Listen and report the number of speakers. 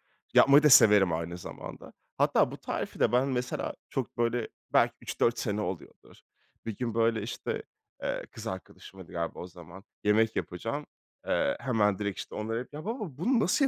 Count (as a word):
one